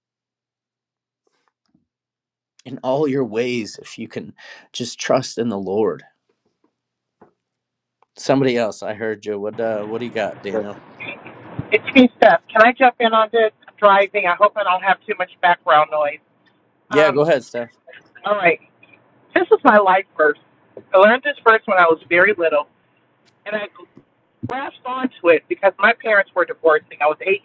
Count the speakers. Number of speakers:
two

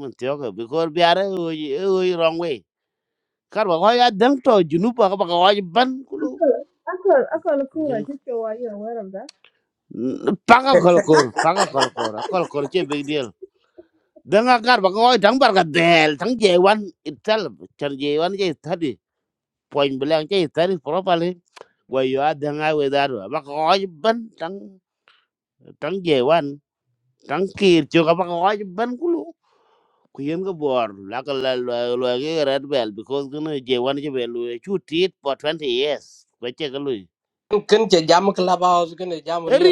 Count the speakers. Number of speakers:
three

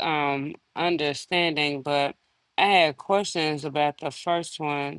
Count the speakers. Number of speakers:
one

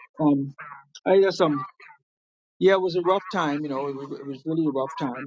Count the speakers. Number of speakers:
one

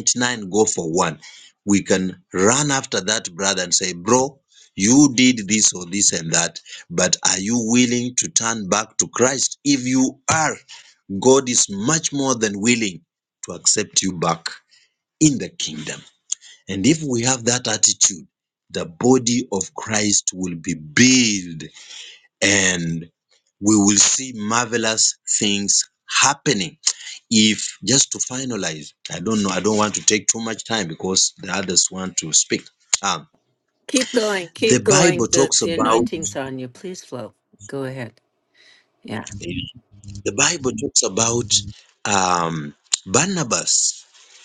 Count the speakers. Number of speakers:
two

